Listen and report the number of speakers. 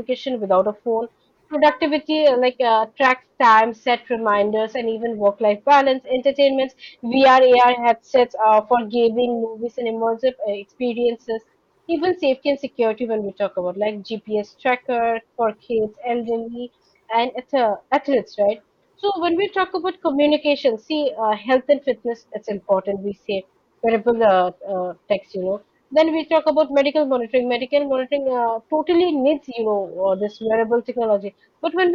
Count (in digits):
1